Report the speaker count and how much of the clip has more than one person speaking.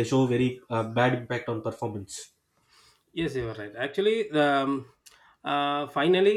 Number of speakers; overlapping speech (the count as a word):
two, no overlap